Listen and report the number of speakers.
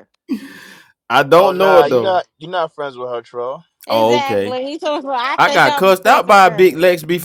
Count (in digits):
3